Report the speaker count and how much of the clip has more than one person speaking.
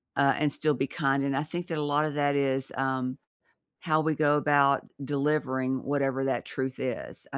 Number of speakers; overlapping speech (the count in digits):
1, no overlap